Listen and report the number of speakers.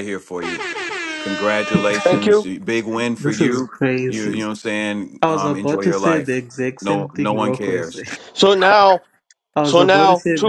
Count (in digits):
3